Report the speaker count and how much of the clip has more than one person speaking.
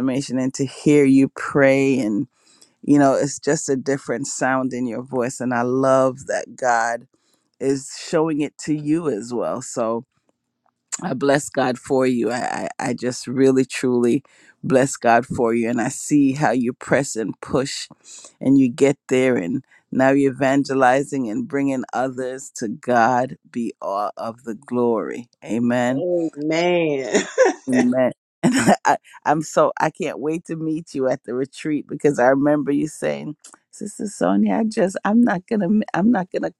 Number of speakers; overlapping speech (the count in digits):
2, under 1%